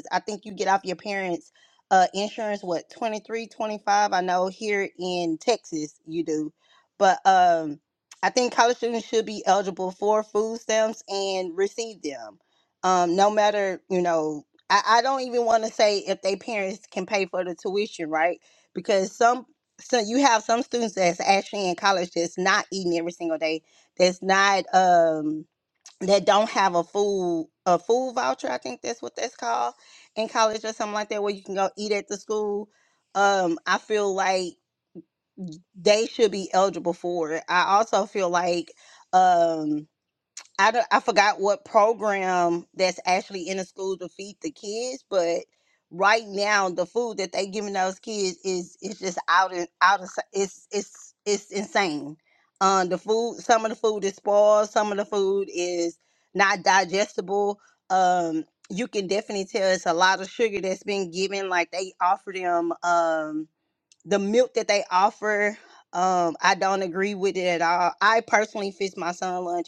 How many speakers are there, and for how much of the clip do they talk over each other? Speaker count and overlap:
one, no overlap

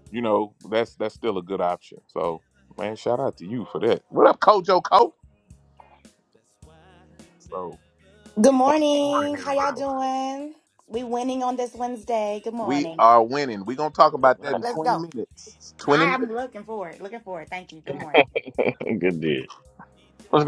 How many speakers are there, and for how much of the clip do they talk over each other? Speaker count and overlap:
three, about 13%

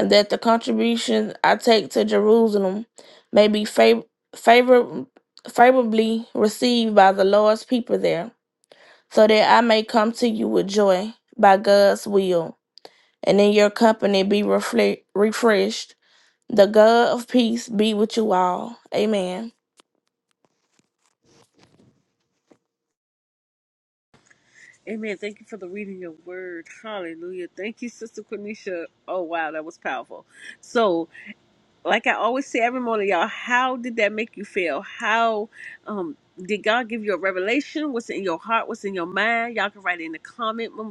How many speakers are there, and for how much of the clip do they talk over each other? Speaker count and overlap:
two, no overlap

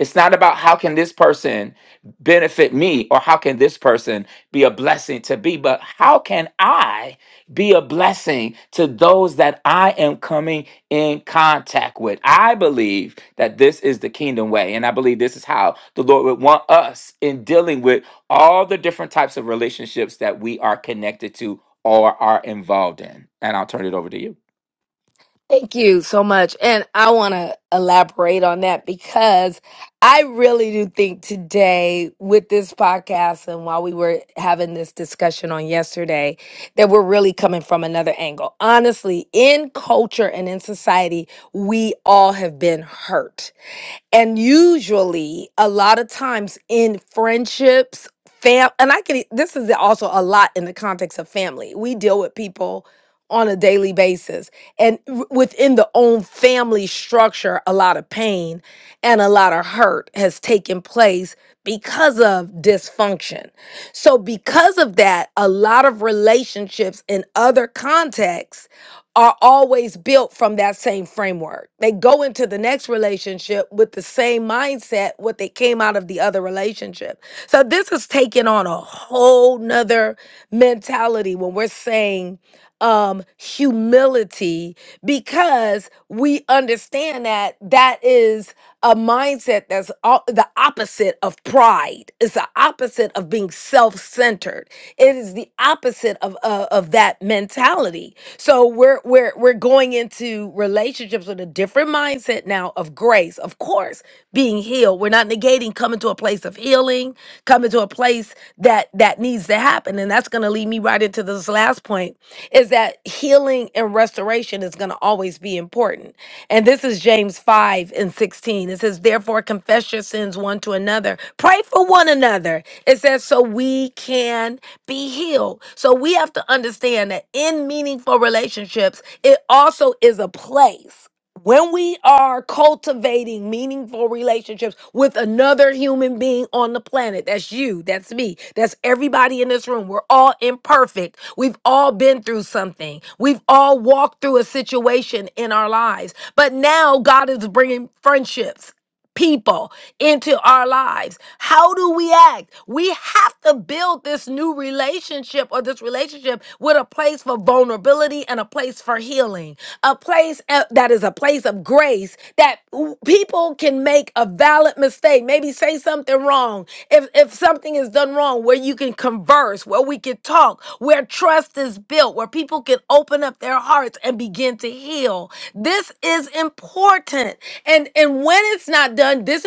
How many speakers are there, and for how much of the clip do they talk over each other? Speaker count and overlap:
two, no overlap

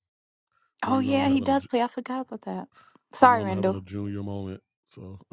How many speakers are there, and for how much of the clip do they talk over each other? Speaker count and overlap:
two, about 27%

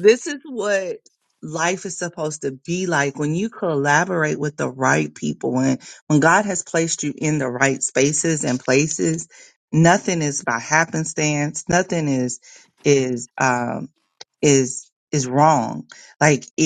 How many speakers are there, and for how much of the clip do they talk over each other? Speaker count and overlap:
one, no overlap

